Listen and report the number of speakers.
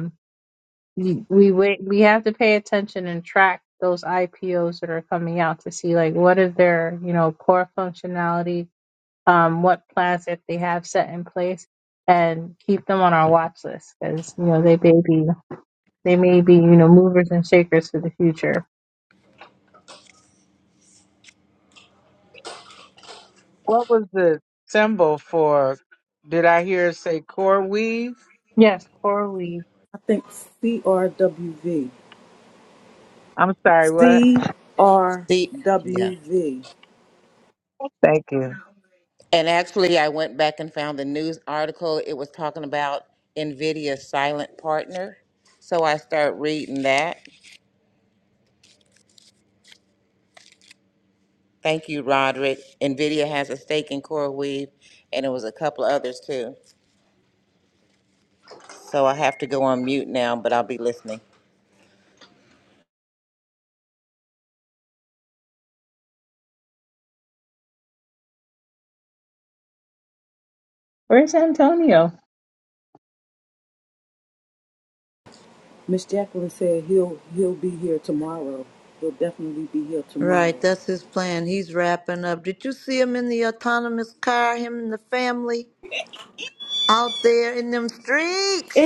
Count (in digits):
5